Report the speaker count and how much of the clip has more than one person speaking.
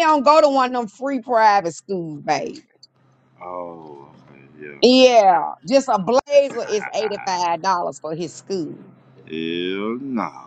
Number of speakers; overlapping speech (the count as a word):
two, about 6%